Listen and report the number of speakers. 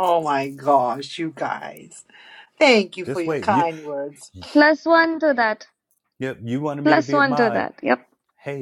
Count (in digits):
3